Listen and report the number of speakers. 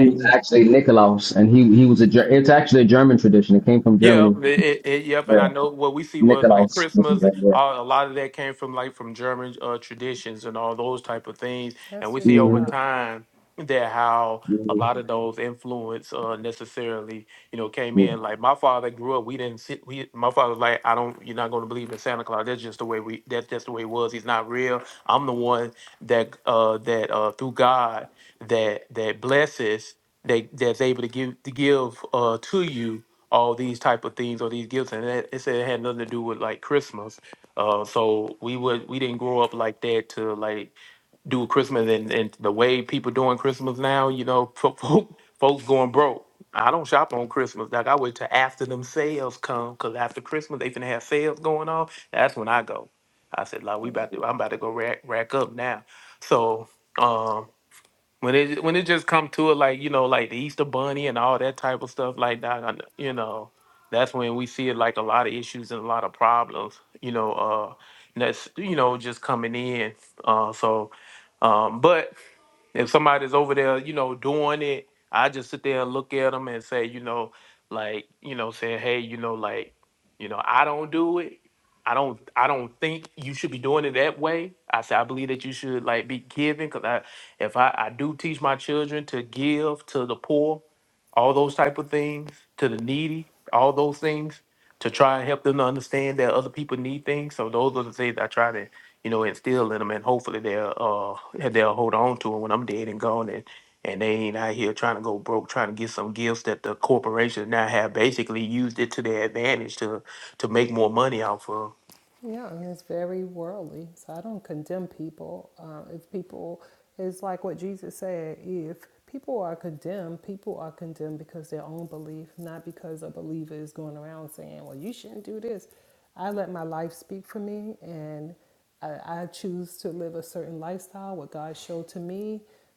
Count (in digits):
3